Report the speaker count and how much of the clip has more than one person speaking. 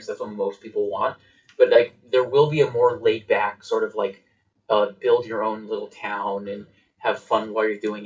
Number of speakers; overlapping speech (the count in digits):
1, no overlap